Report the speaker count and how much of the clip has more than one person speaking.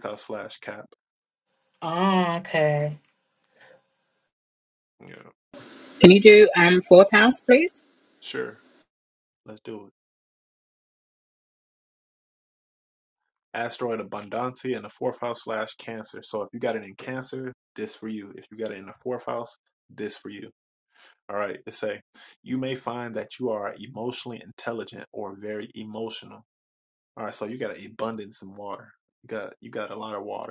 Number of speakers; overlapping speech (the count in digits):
3, no overlap